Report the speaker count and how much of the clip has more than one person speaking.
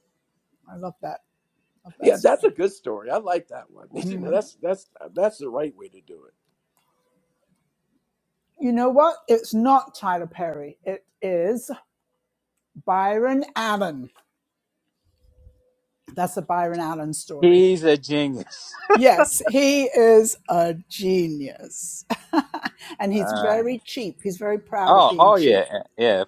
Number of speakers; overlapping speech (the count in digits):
3, about 7%